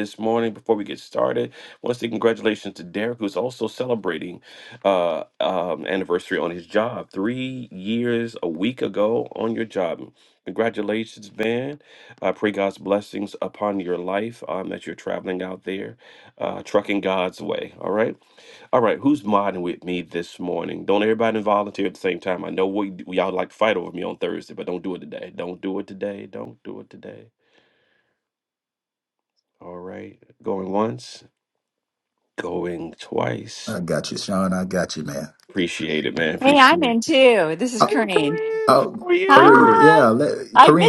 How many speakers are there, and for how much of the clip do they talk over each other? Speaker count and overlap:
three, about 7%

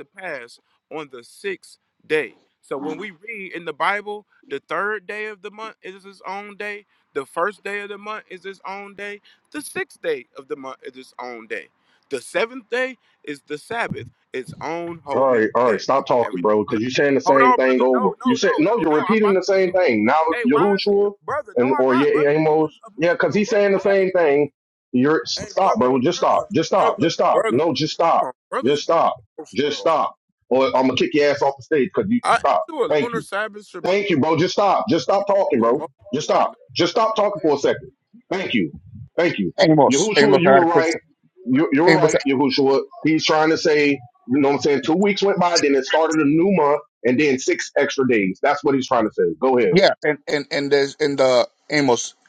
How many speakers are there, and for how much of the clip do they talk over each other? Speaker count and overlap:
three, about 24%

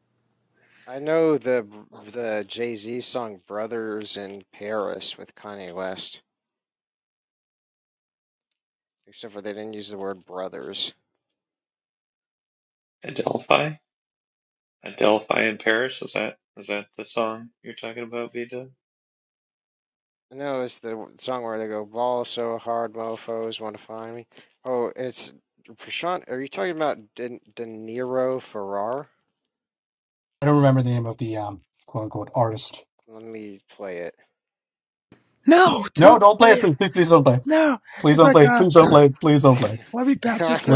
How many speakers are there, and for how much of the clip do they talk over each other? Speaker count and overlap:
four, about 4%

